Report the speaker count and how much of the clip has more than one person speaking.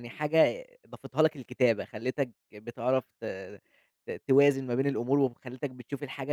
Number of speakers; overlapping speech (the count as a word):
one, no overlap